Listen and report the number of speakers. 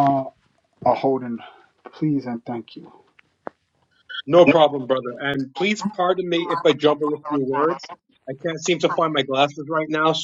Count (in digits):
2